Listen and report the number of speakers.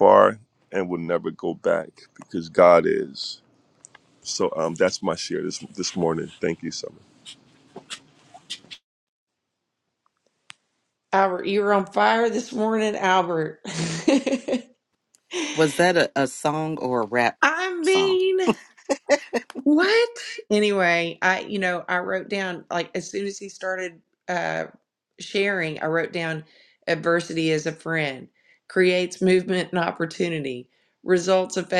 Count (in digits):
3